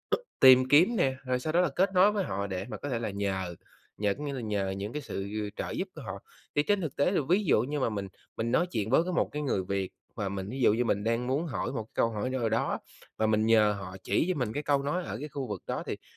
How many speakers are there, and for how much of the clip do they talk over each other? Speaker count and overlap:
1, no overlap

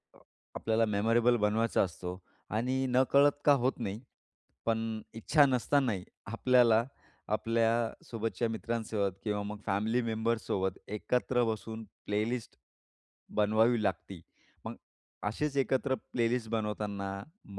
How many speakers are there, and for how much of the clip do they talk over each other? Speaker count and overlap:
1, no overlap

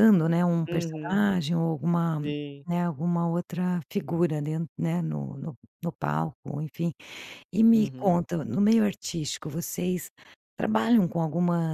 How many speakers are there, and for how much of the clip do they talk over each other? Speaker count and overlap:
2, about 8%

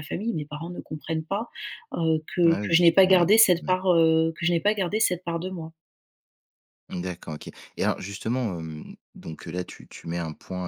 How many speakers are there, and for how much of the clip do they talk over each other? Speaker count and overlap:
2, about 9%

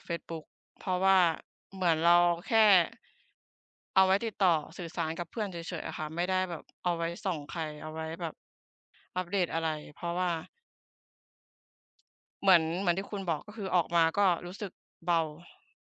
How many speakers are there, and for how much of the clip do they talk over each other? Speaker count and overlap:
1, no overlap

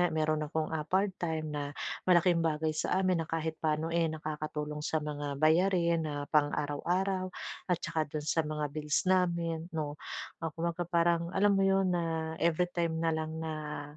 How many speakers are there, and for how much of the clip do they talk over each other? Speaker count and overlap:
1, no overlap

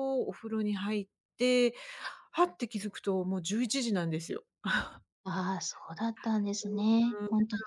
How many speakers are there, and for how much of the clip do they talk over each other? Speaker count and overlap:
2, no overlap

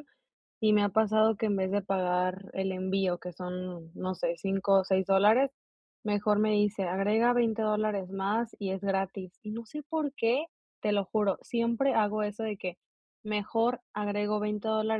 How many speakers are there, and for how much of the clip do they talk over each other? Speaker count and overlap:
1, no overlap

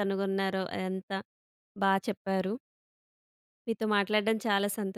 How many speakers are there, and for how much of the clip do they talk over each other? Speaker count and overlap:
1, no overlap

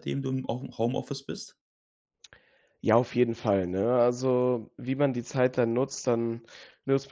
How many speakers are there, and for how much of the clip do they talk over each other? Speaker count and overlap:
2, no overlap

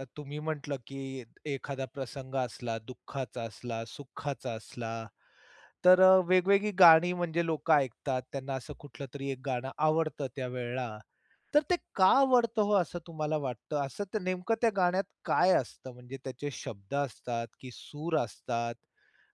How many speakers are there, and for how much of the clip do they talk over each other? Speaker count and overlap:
1, no overlap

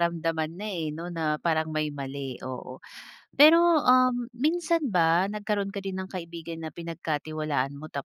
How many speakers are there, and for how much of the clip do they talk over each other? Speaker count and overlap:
1, no overlap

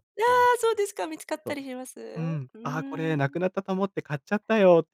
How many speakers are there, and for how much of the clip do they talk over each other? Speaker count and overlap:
2, about 32%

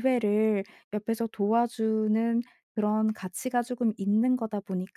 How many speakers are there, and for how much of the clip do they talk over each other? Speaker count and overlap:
1, no overlap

